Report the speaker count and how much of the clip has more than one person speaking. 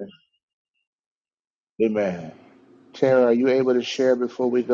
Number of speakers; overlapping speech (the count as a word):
one, no overlap